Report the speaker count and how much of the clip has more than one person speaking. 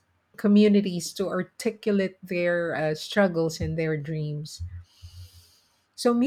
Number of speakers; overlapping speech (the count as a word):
one, no overlap